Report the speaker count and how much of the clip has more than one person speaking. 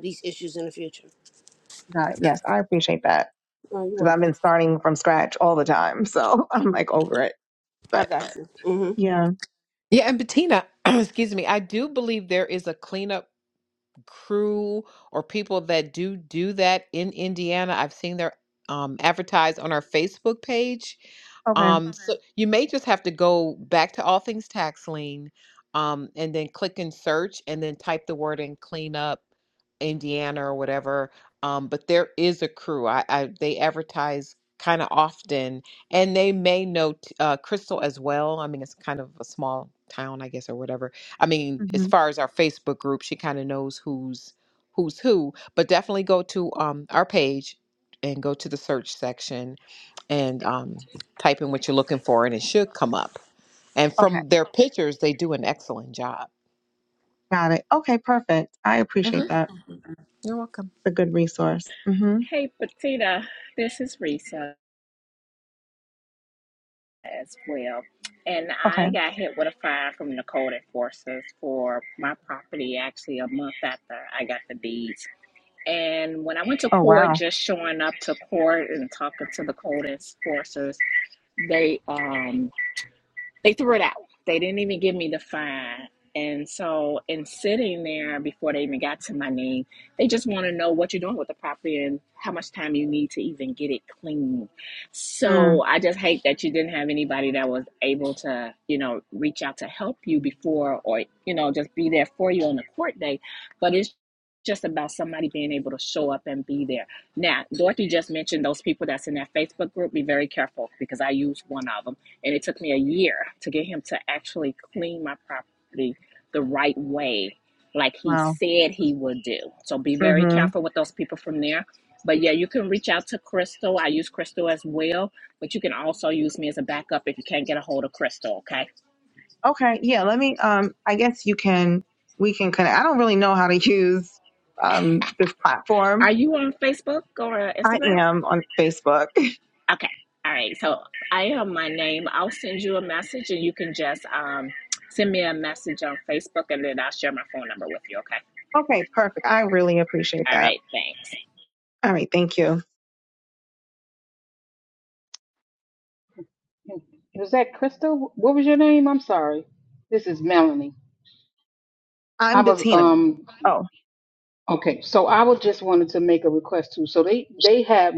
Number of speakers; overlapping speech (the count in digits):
5, about 3%